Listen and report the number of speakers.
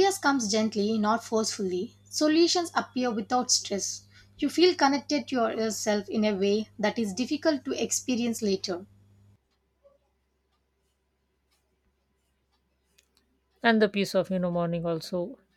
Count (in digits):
2